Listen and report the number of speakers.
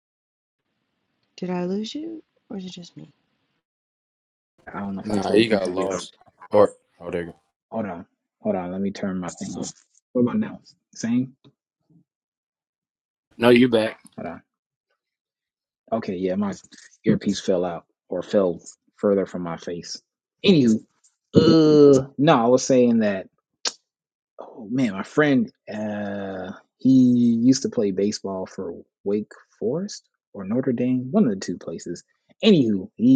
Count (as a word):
three